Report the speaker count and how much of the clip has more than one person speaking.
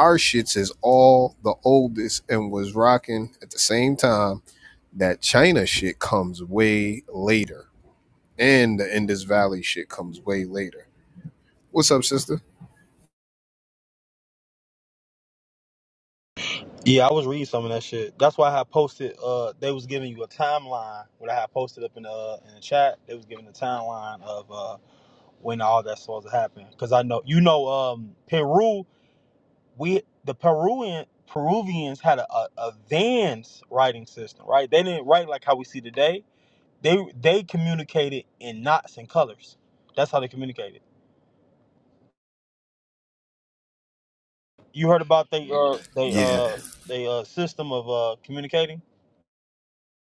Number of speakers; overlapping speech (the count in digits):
2, about 1%